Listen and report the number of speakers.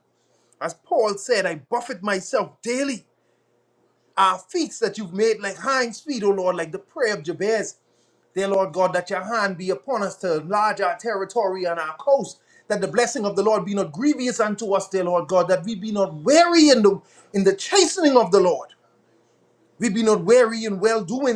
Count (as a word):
one